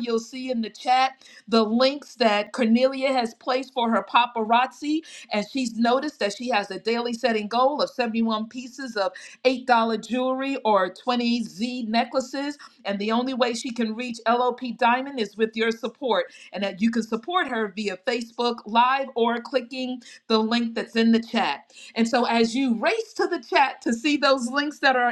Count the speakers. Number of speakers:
1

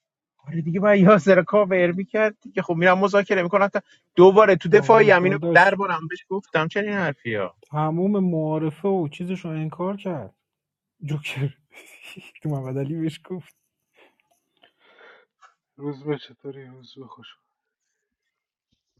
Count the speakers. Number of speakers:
3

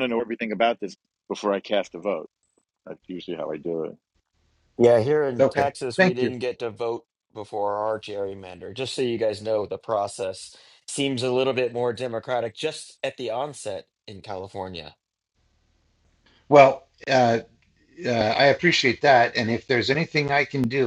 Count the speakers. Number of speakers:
3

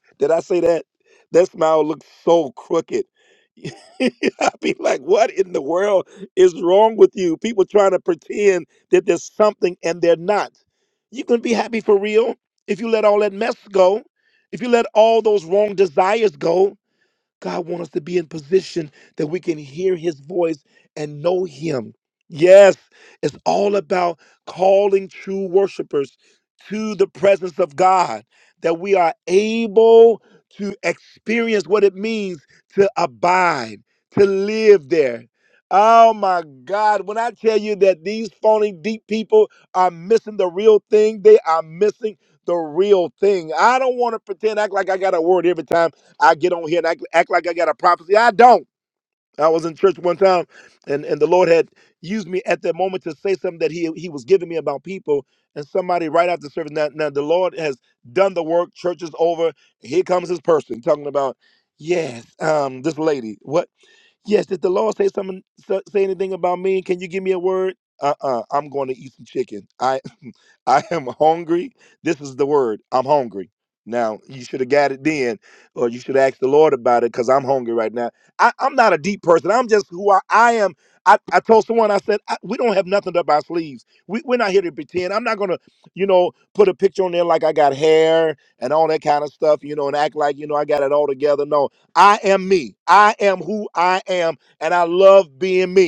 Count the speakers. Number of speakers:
1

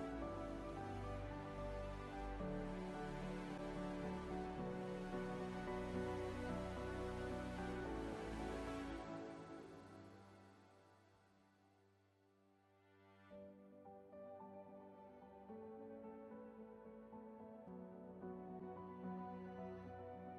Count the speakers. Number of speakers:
0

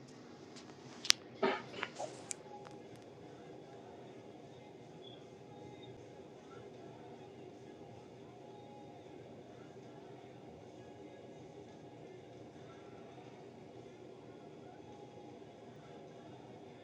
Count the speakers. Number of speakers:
0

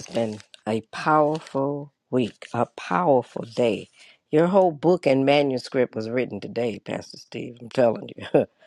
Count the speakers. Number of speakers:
1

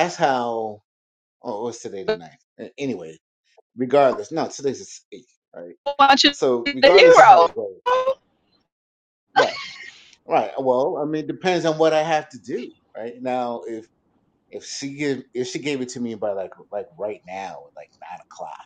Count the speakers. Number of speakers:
2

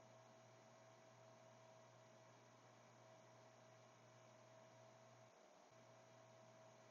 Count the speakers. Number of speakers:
0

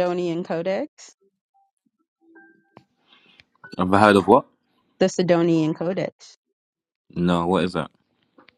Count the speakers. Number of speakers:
2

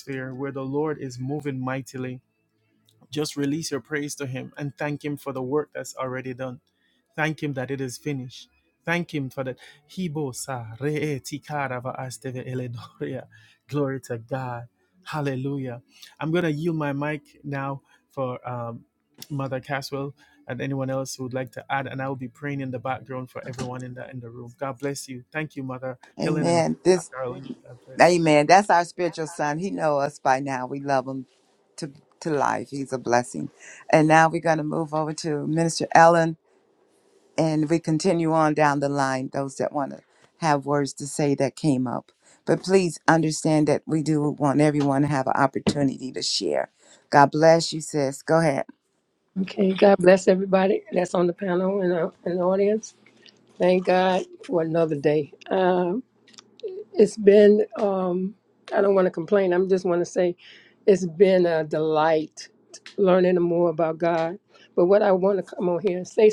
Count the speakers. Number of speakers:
3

